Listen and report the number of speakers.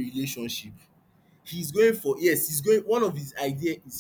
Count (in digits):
1